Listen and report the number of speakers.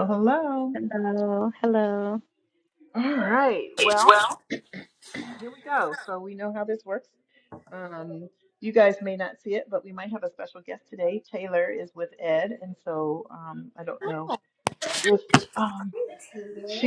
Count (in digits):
3